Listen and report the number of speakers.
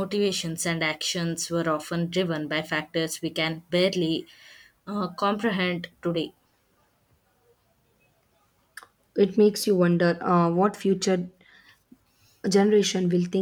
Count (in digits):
2